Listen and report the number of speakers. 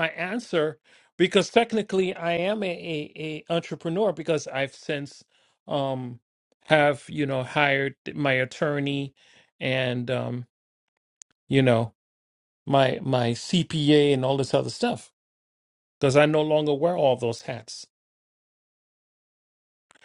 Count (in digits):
1